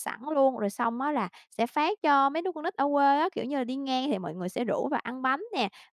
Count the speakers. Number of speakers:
1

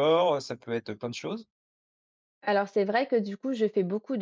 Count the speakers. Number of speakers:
2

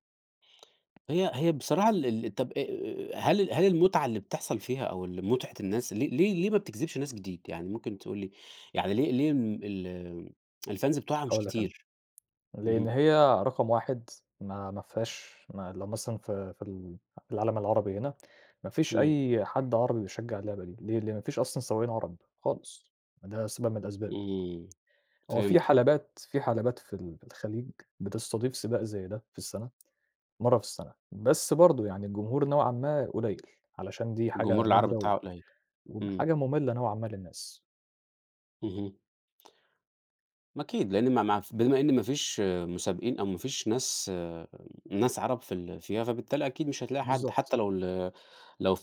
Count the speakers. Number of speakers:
2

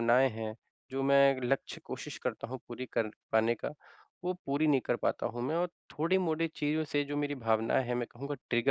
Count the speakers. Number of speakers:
1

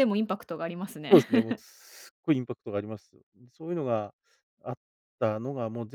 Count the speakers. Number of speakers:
2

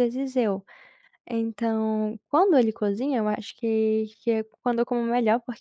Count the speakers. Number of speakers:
1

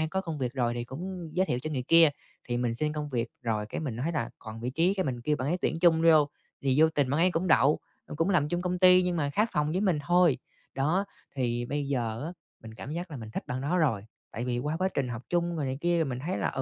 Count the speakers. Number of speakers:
1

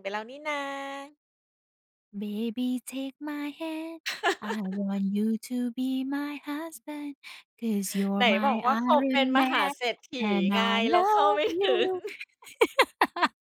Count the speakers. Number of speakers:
2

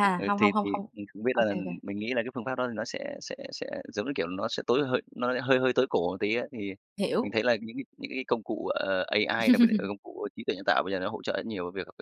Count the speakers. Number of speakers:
2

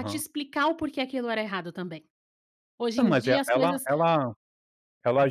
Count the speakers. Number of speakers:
2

